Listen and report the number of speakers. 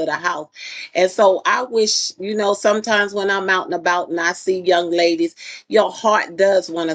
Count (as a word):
one